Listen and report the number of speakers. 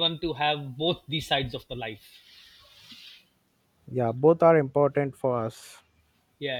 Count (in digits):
2